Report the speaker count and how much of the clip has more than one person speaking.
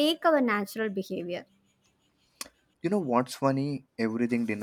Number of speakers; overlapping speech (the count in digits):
2, no overlap